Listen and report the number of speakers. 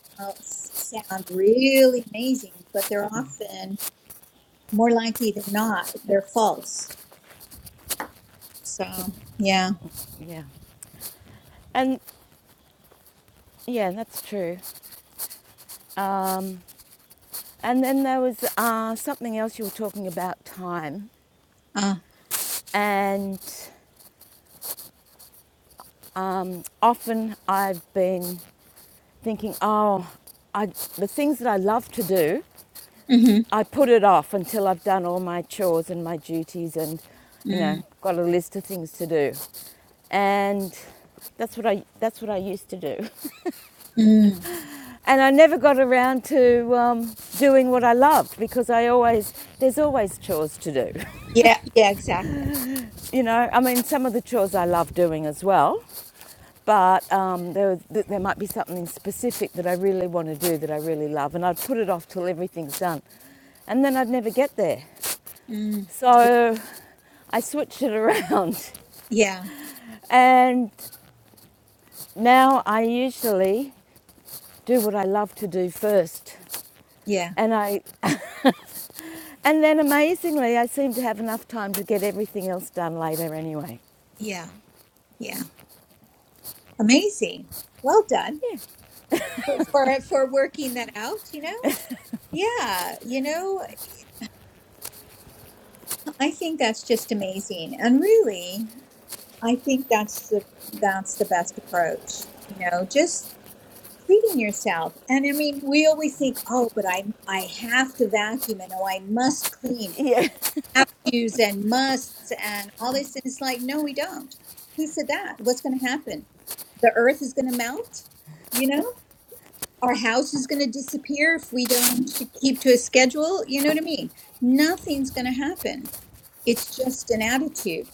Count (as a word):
two